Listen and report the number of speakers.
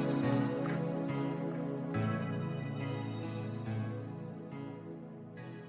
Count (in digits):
0